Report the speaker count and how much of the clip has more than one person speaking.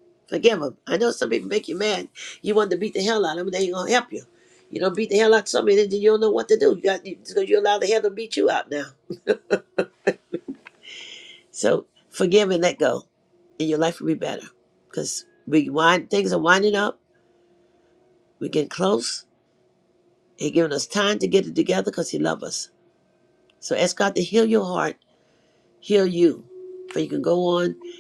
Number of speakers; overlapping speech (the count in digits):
1, no overlap